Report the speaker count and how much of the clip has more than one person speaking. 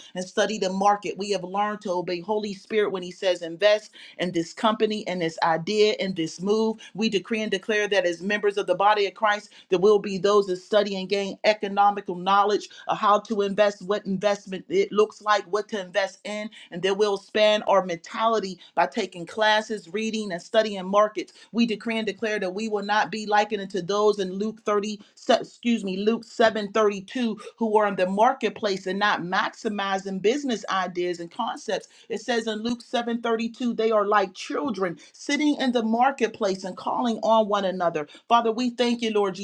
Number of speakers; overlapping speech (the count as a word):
one, no overlap